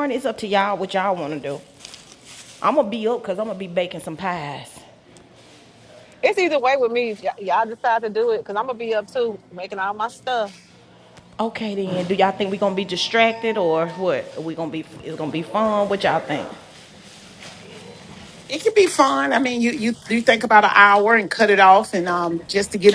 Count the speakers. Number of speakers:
three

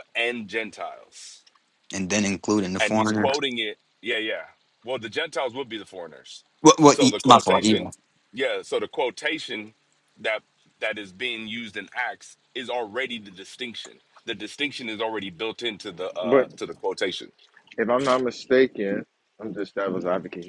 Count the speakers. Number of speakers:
three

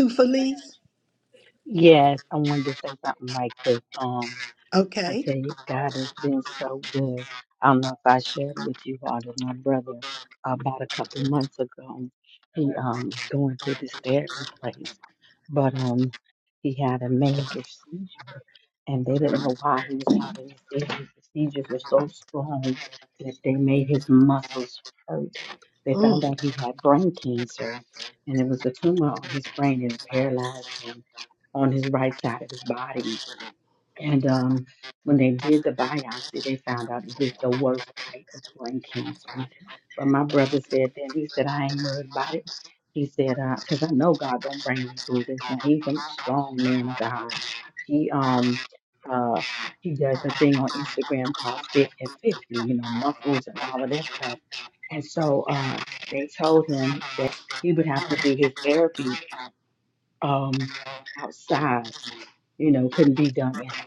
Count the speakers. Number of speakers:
two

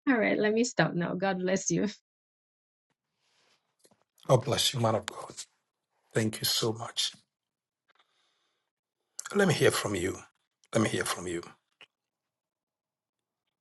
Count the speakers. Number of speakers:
two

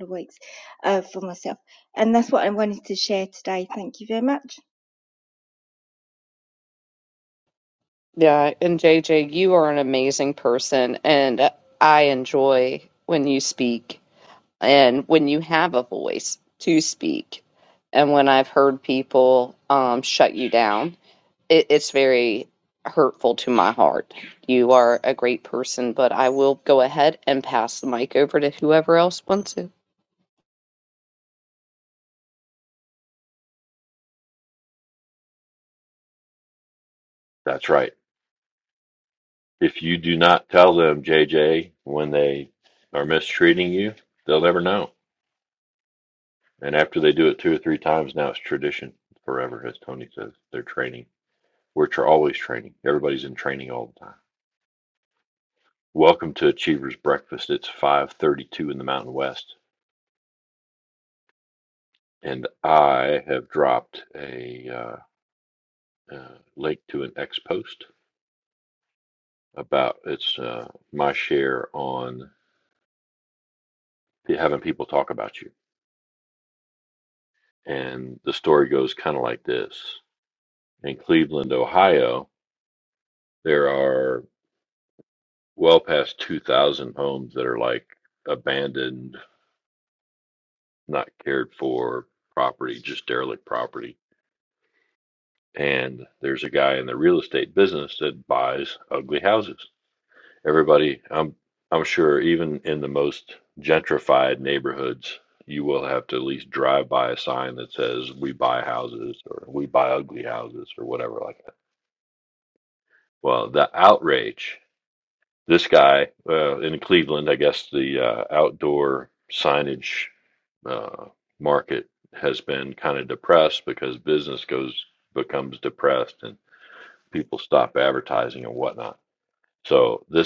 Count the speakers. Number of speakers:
three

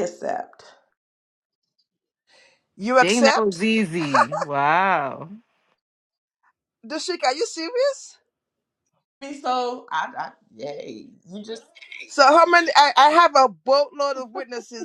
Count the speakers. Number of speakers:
three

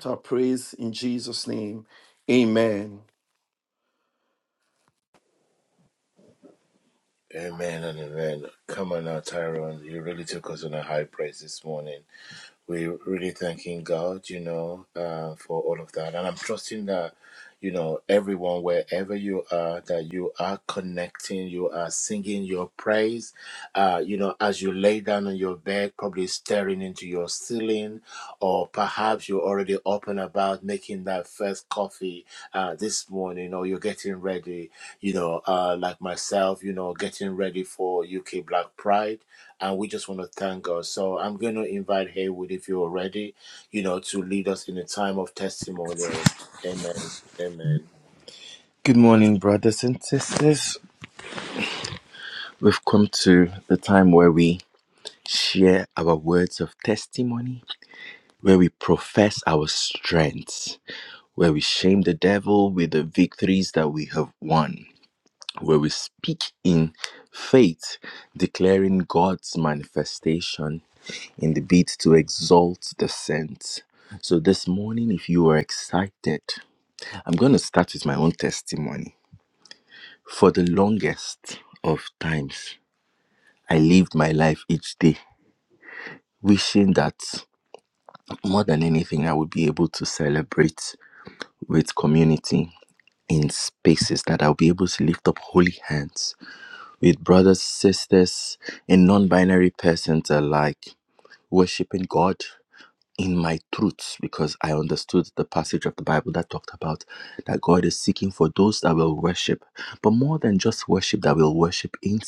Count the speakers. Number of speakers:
three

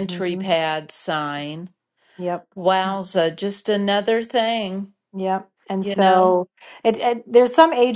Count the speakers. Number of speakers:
two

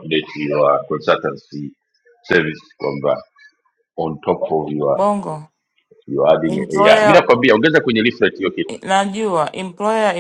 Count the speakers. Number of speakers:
two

